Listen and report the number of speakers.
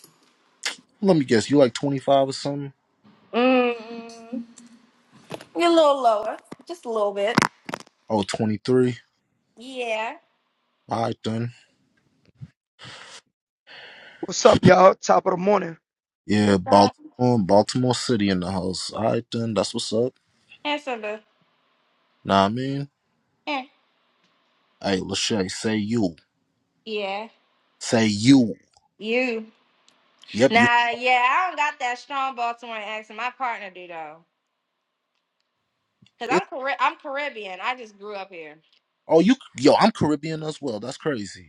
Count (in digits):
3